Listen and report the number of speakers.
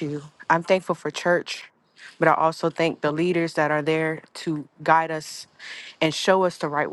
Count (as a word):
one